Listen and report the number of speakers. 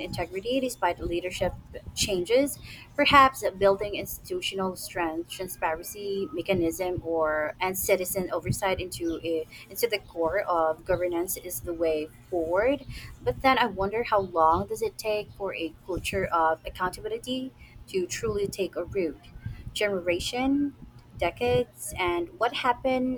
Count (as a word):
one